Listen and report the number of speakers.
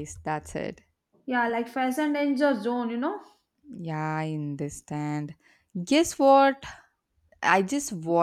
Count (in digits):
2